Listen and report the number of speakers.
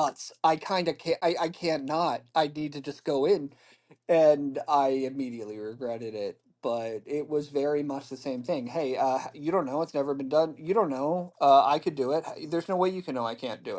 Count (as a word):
one